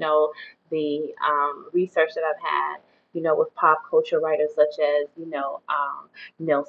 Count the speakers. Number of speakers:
one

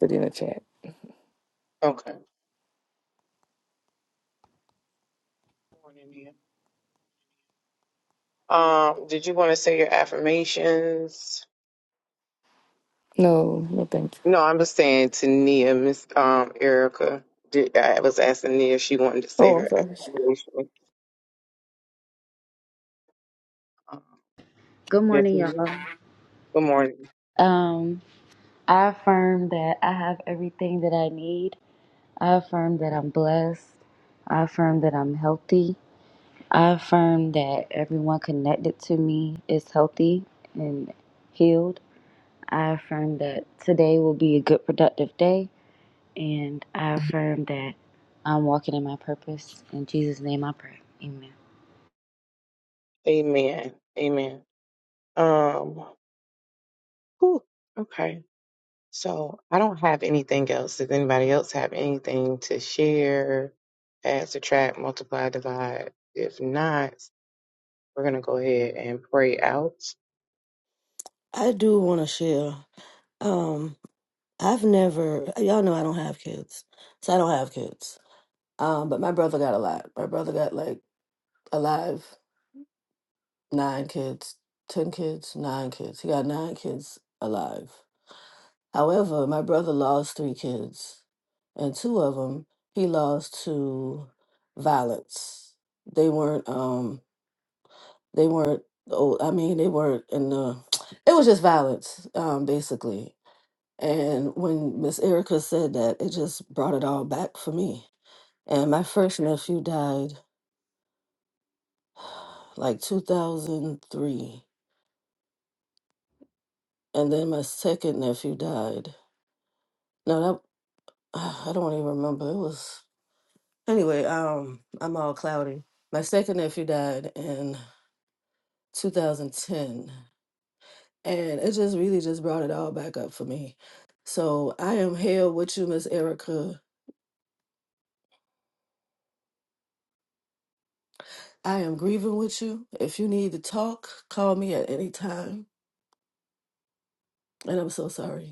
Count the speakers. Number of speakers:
four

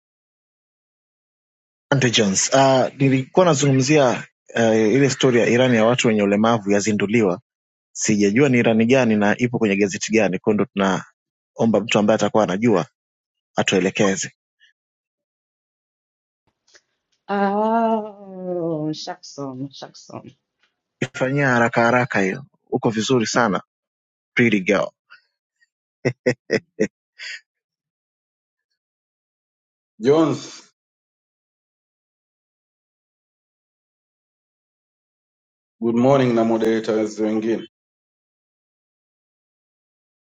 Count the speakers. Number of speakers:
three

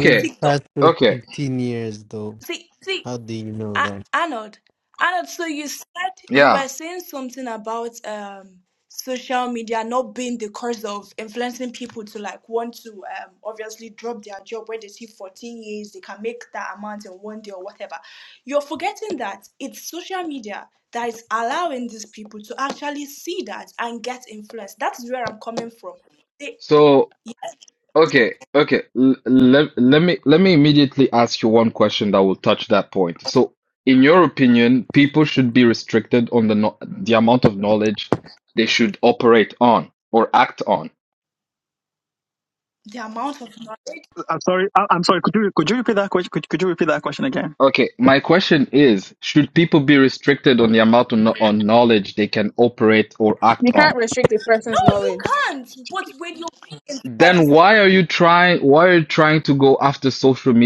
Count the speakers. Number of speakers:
five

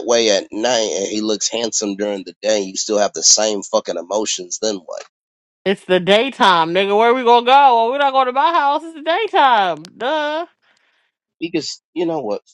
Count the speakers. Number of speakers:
two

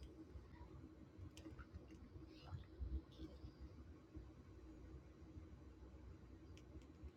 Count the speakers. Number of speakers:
zero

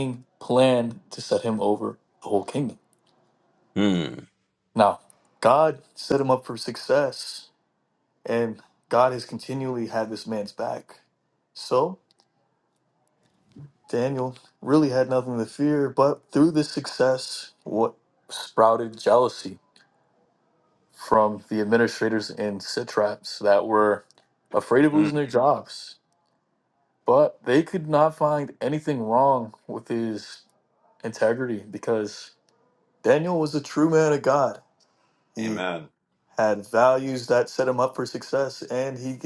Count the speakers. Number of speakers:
two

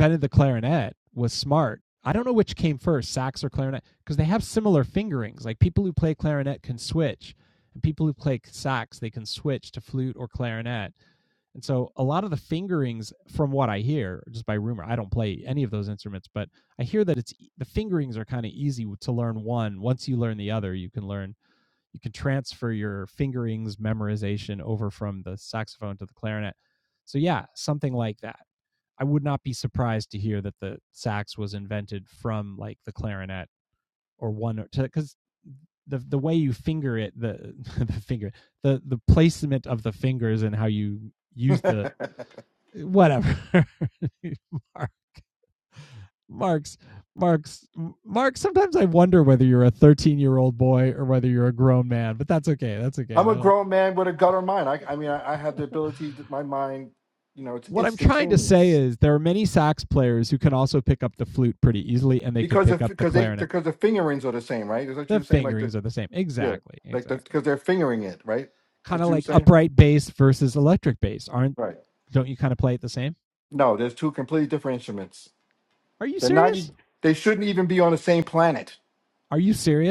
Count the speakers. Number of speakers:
two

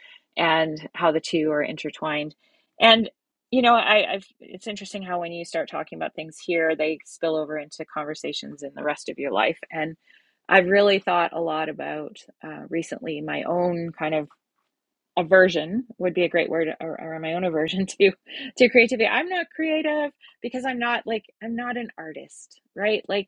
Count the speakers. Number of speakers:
one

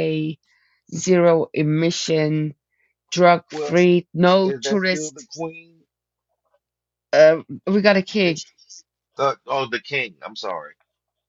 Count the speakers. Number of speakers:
two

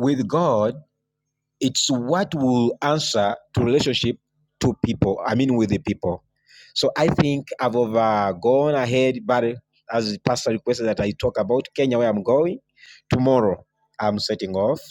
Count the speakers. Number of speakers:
one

